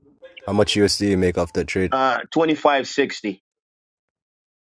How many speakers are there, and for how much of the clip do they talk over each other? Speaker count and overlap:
2, no overlap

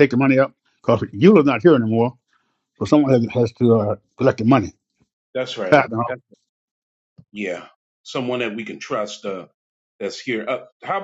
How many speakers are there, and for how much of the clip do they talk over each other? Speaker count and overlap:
2, about 3%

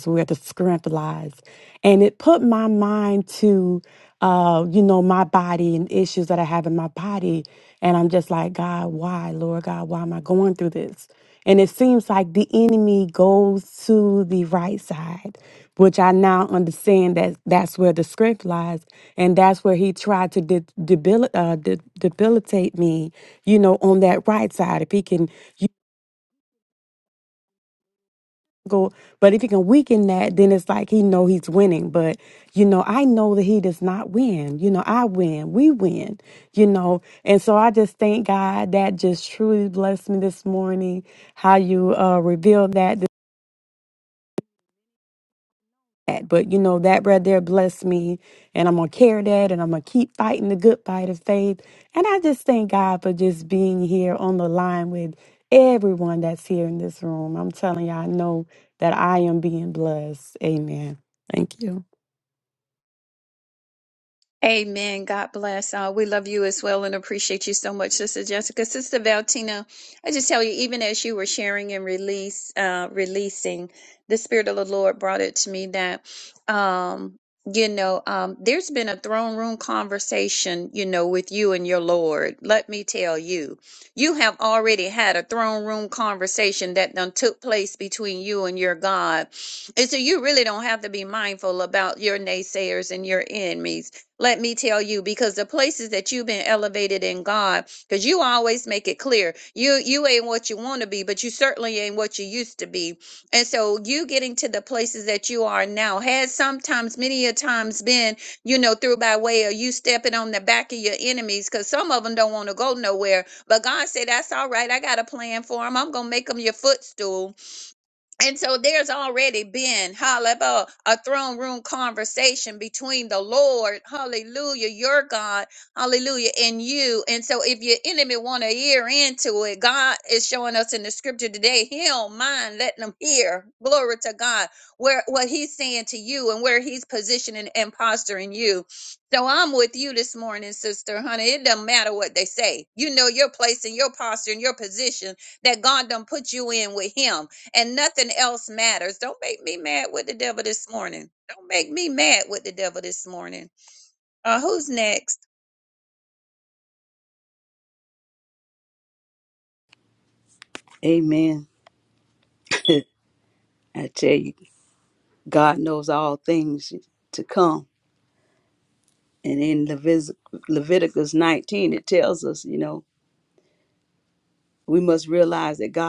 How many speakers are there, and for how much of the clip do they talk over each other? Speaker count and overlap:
3, no overlap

